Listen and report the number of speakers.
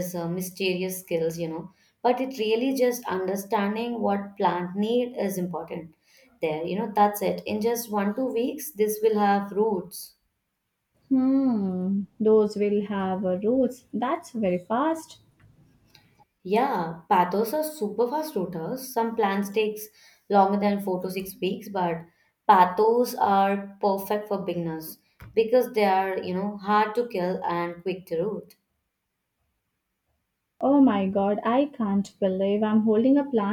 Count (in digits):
2